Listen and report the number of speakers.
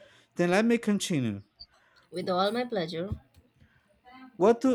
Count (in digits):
2